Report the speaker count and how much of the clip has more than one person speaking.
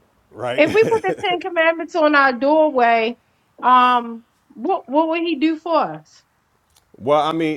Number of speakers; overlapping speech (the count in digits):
2, about 3%